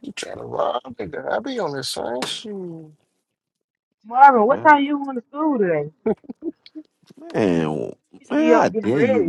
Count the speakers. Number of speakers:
3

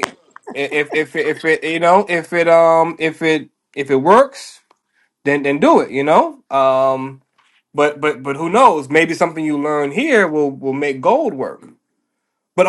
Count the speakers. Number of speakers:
1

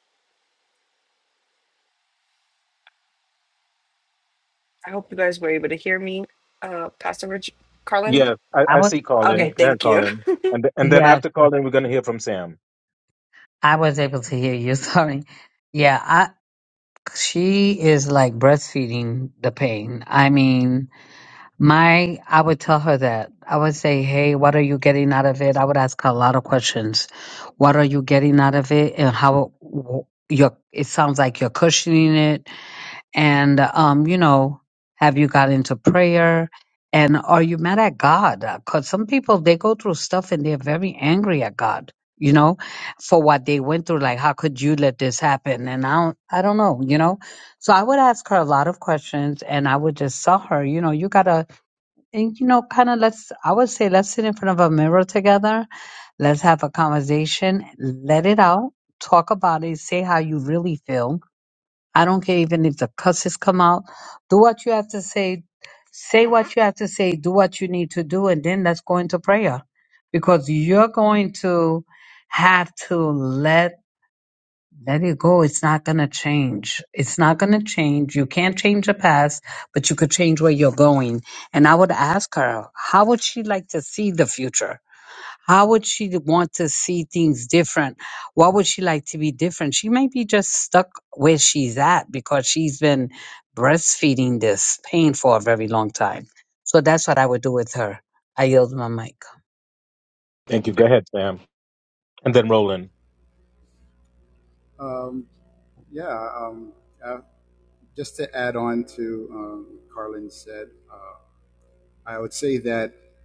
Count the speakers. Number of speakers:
4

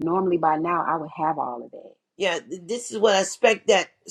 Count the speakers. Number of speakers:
2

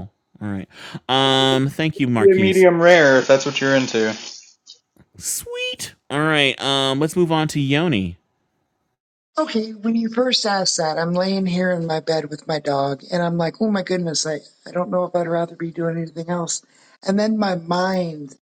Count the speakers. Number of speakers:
3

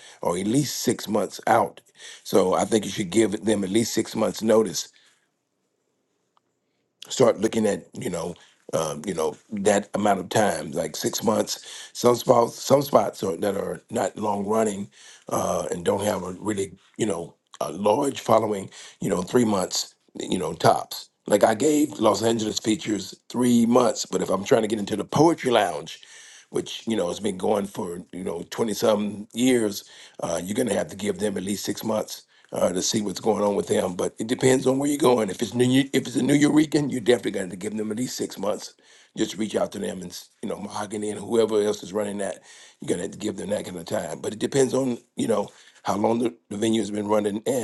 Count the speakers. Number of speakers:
1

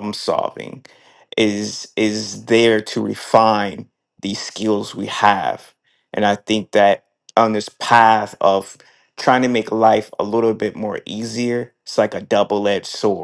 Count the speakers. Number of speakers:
1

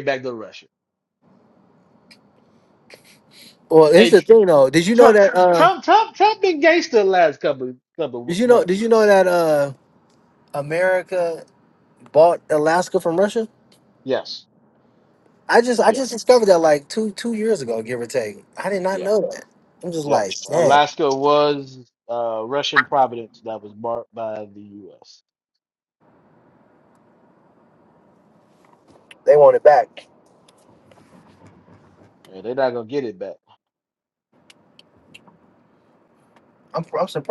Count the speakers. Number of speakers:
2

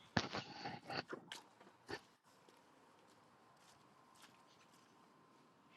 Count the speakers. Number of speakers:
0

